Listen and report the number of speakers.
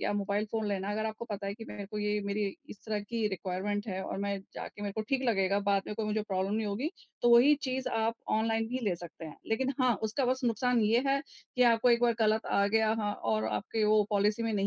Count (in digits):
1